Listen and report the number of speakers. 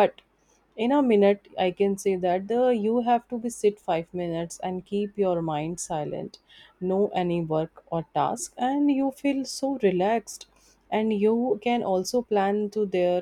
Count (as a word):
one